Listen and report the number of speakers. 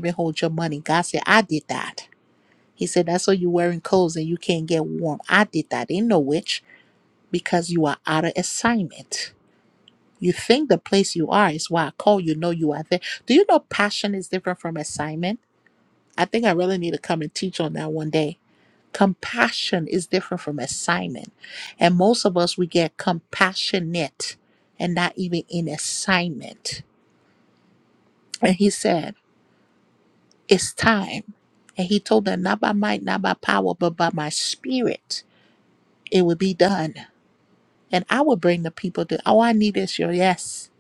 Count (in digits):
1